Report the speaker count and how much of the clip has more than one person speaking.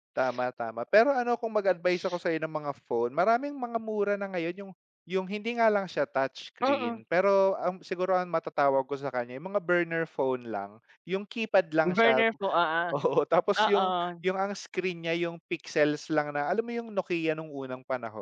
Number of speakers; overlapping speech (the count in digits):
2, about 6%